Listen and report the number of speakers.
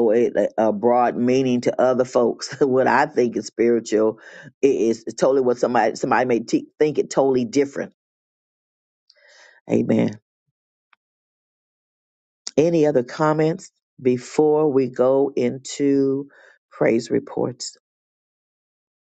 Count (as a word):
one